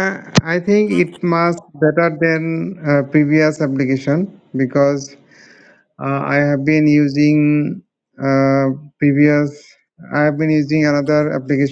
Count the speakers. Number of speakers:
1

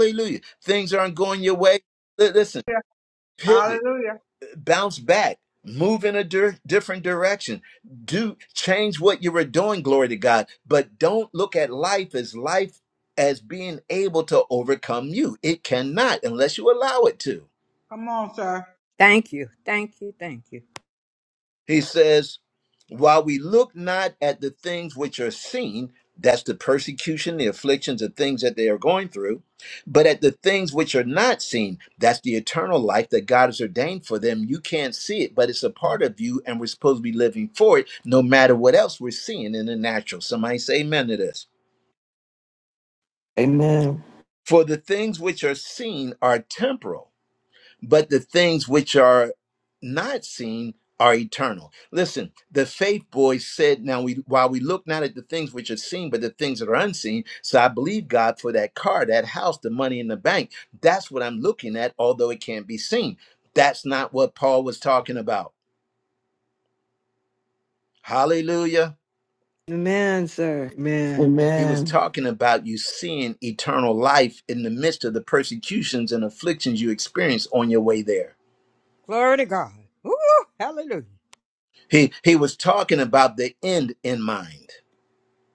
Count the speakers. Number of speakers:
5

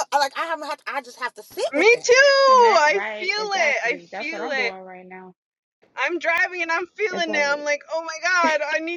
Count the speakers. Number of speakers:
3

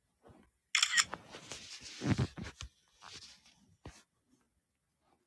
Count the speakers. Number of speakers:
0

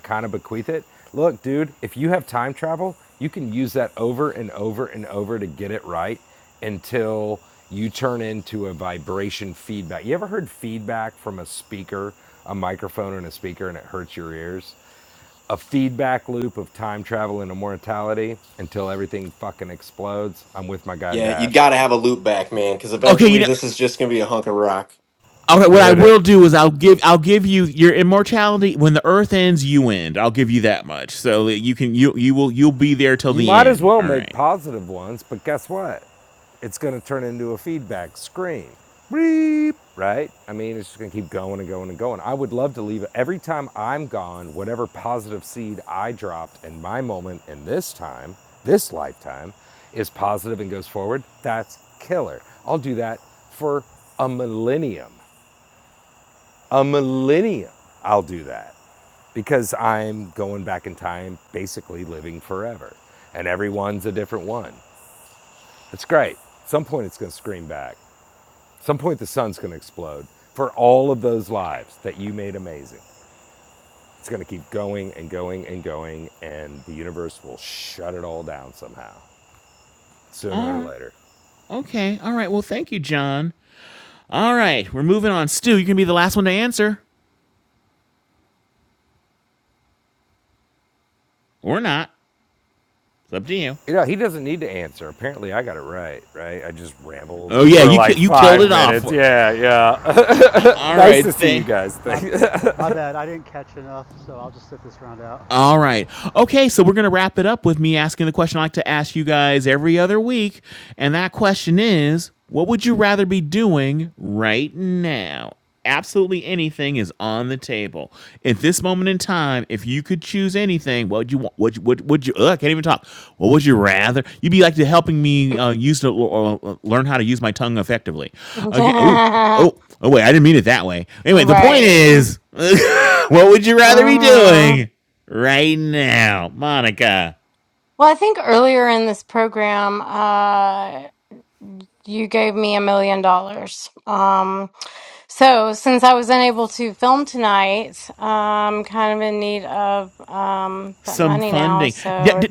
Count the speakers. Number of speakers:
5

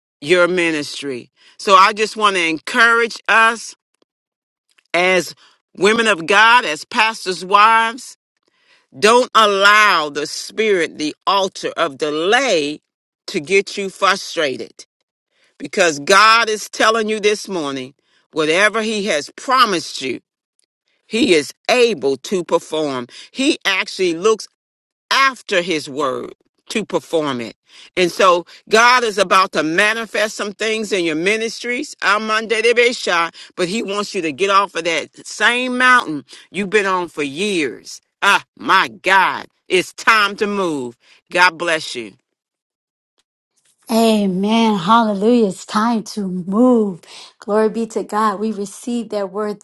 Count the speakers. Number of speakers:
2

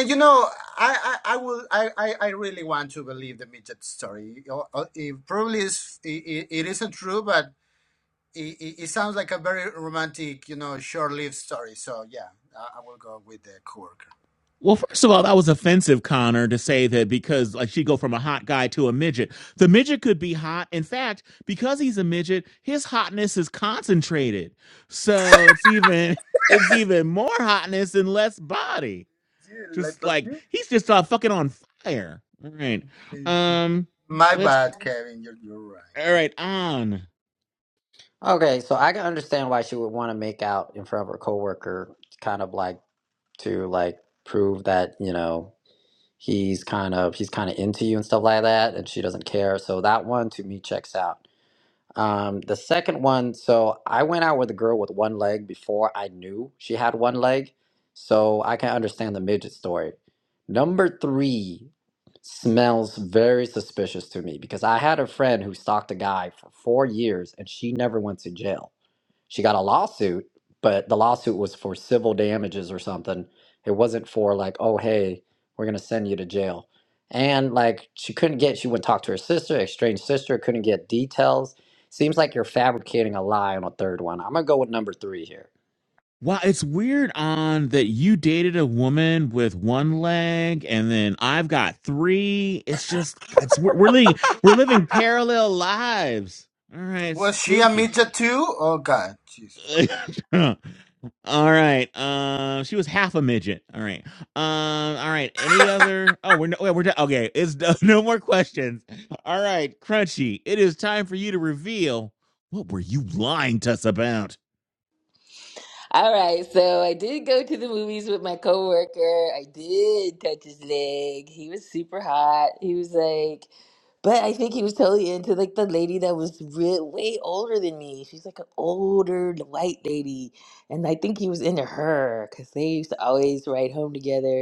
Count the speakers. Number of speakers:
4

